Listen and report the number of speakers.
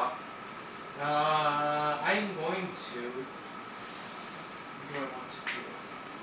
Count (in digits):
1